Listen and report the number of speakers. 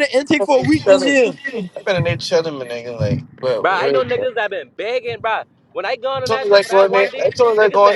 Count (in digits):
3